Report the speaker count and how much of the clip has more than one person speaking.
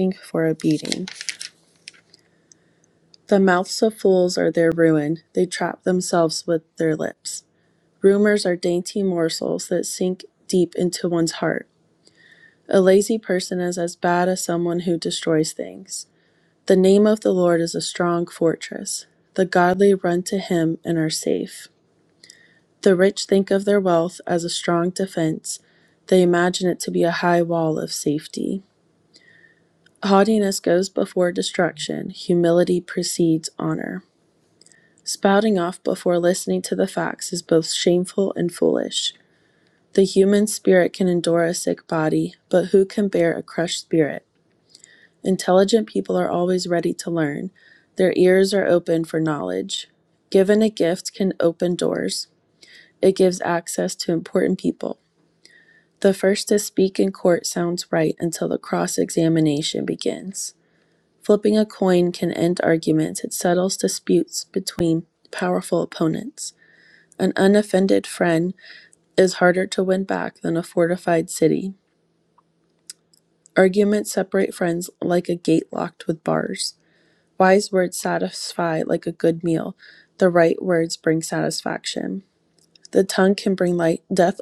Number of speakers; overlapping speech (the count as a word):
one, no overlap